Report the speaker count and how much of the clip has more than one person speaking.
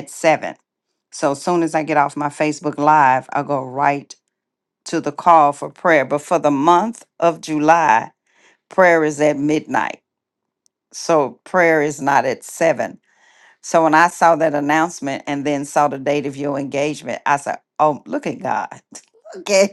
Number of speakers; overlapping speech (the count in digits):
1, no overlap